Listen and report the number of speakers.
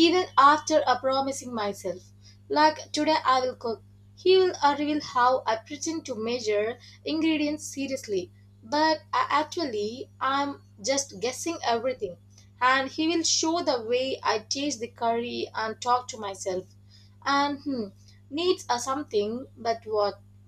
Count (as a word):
one